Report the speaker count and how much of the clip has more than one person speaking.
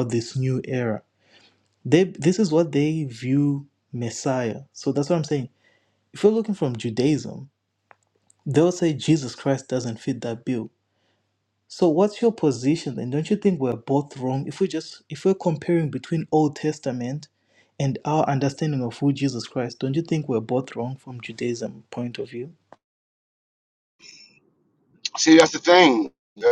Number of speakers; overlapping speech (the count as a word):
two, no overlap